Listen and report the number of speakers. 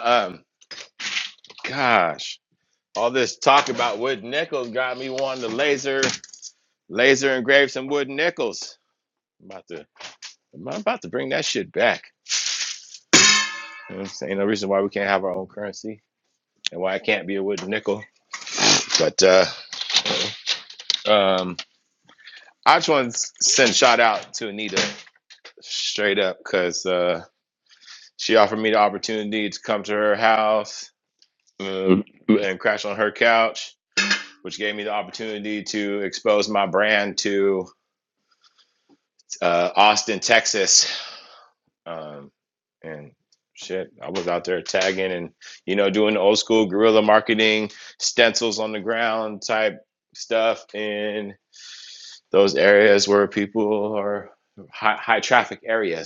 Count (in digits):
1